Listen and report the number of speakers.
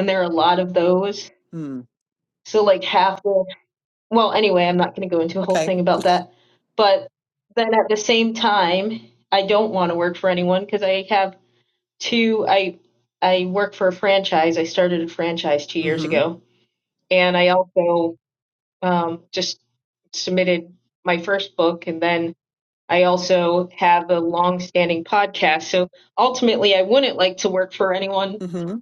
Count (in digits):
2